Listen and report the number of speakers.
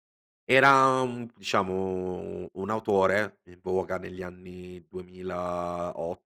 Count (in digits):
1